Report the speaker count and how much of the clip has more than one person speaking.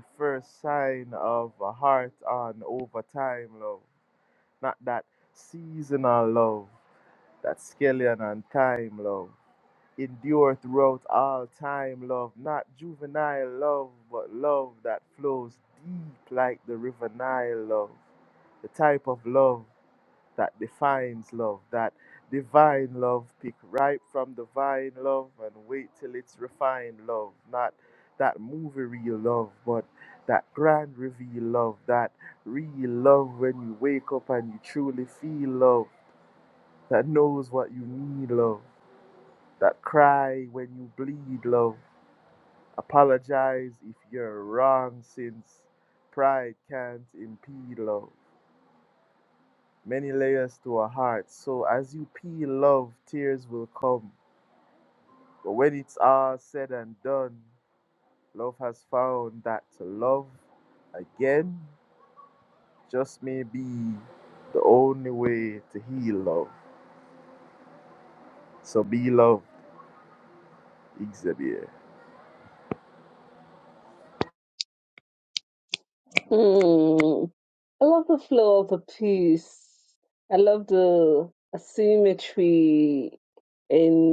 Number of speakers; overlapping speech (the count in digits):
2, no overlap